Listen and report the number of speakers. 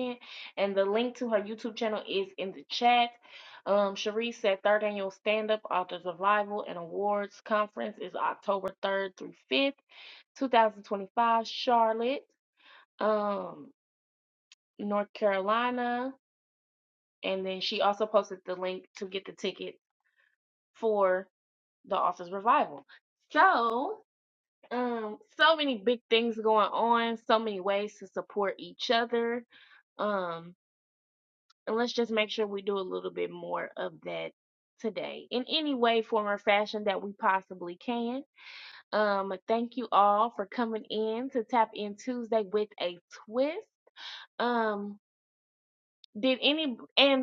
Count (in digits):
1